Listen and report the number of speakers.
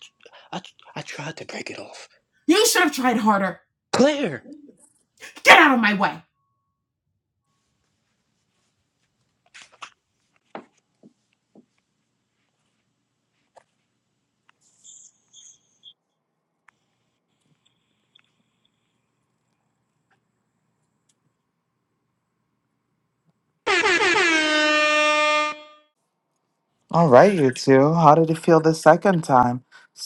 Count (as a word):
three